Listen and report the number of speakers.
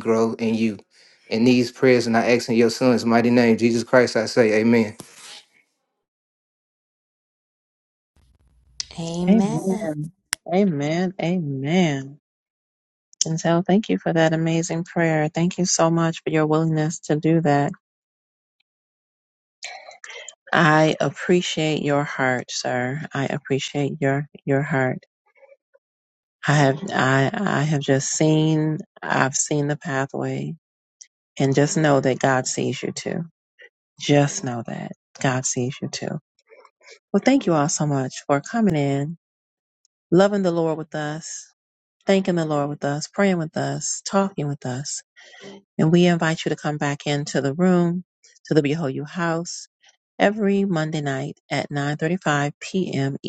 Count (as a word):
two